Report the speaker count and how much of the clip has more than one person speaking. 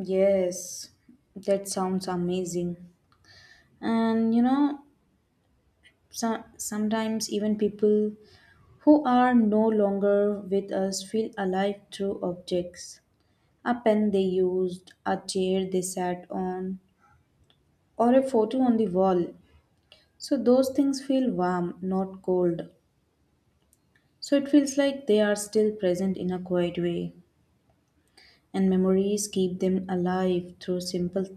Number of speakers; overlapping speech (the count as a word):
one, no overlap